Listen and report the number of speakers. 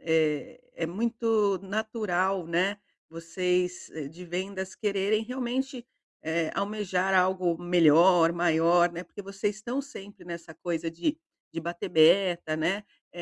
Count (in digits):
1